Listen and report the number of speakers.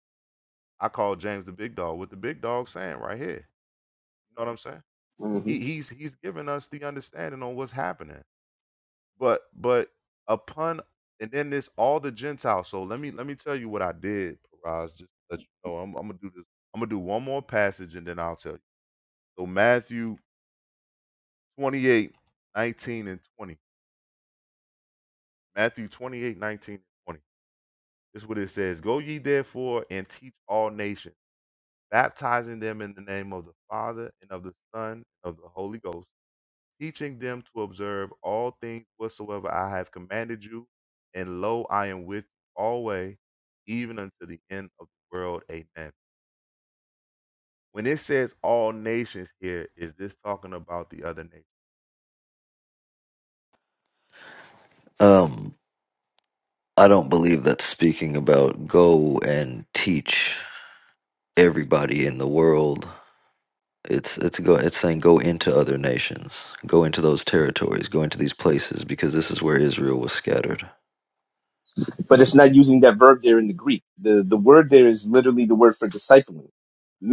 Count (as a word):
three